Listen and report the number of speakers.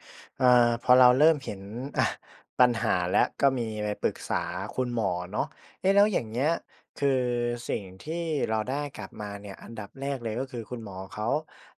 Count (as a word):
one